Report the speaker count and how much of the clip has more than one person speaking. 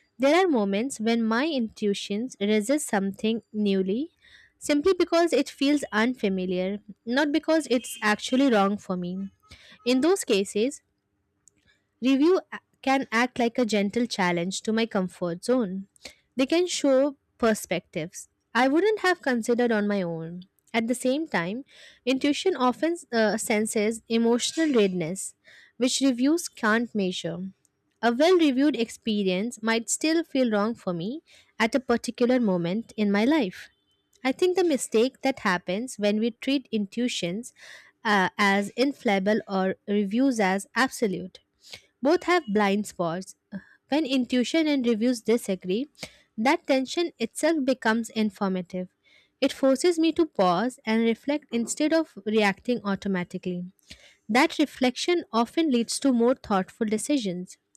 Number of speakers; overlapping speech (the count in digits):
1, no overlap